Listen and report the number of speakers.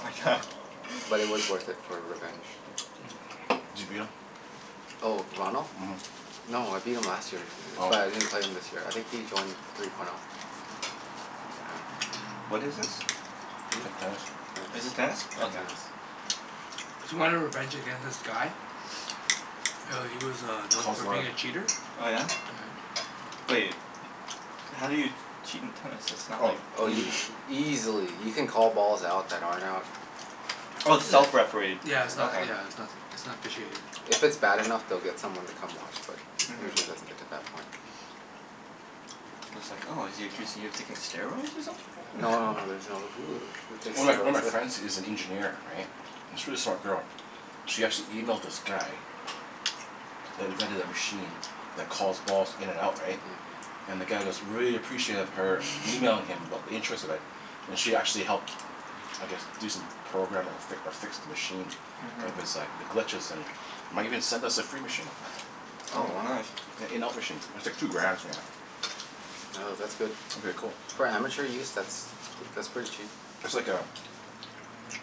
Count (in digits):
4